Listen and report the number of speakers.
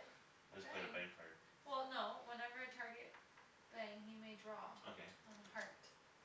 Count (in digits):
2